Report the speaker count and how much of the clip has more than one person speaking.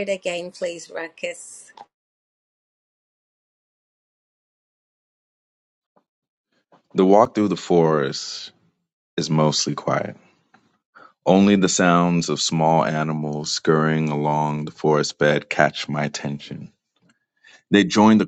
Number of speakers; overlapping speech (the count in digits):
2, no overlap